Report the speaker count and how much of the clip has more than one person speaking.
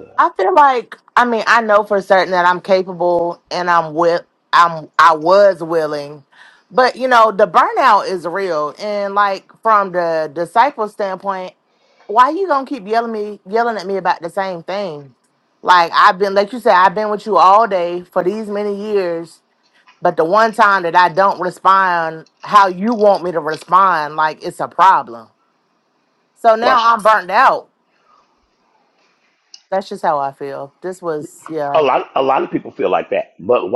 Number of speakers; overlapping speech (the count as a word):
two, about 1%